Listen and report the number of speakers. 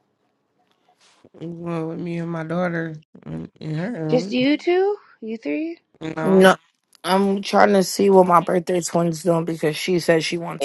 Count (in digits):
3